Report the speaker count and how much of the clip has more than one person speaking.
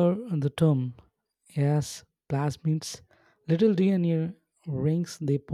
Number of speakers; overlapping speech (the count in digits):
1, no overlap